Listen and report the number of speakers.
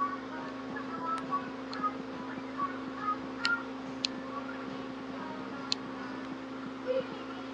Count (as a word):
zero